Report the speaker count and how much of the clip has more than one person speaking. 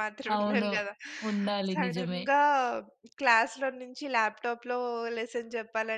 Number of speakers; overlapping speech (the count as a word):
two, about 17%